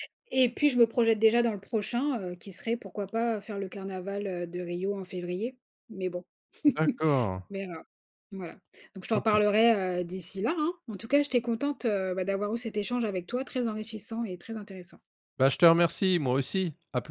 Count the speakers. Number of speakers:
2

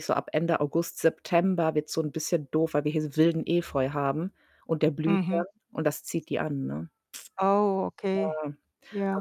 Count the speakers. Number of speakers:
2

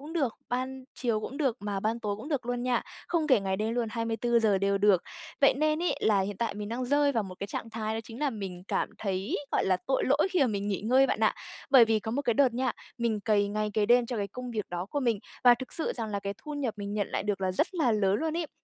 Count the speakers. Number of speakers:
1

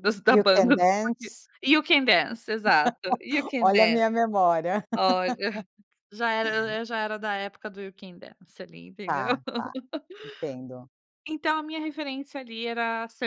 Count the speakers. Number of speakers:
2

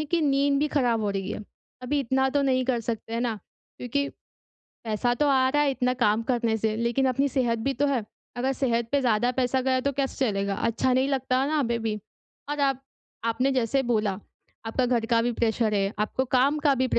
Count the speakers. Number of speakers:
1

